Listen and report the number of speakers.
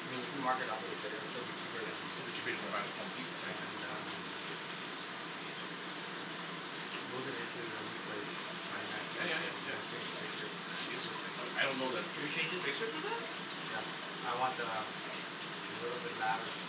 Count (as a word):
three